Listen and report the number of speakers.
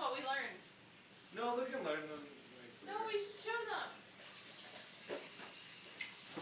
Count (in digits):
2